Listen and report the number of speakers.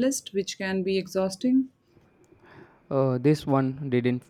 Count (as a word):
two